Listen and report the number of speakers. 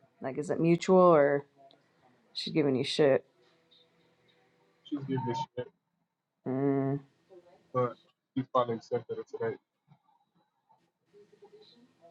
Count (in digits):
2